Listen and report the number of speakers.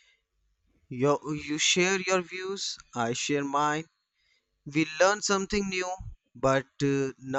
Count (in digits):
1